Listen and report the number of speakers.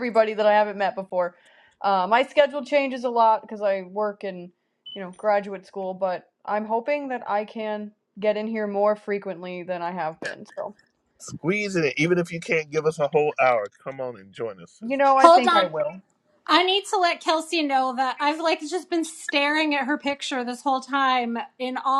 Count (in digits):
3